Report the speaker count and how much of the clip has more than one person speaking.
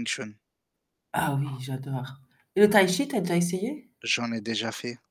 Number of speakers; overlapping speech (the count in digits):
2, no overlap